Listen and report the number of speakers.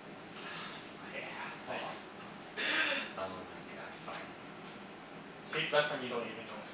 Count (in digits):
2